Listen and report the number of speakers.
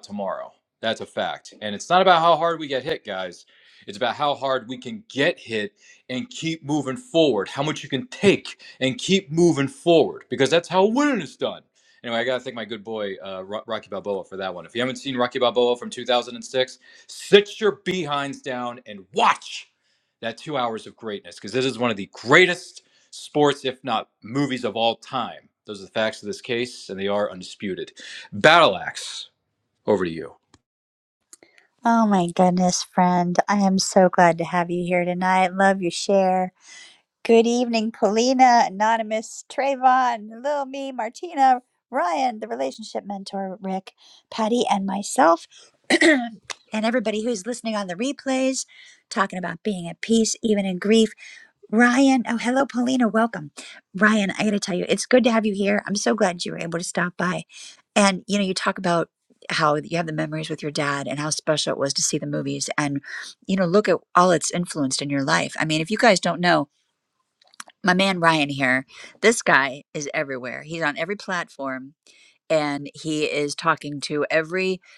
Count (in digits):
2